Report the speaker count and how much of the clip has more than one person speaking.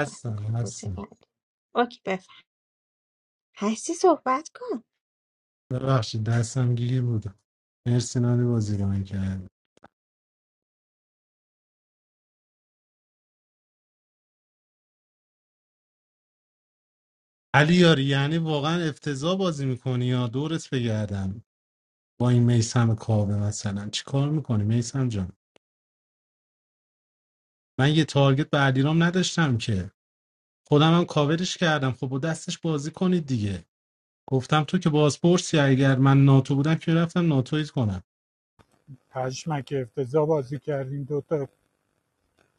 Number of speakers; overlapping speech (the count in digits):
3, about 2%